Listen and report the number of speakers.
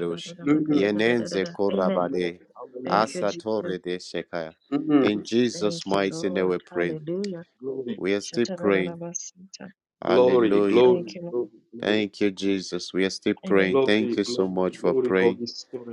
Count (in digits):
3